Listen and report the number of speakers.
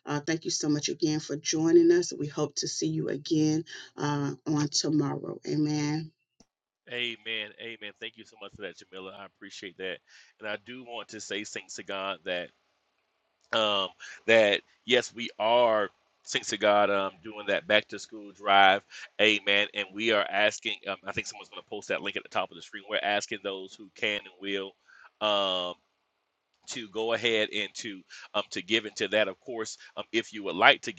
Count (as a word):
two